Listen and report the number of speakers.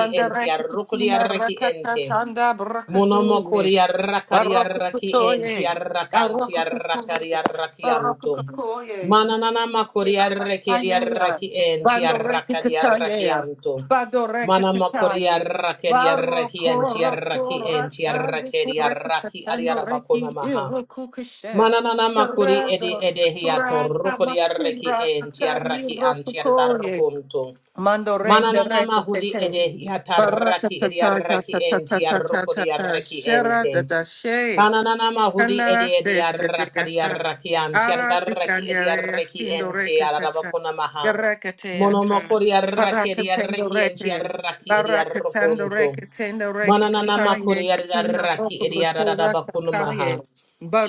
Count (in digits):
2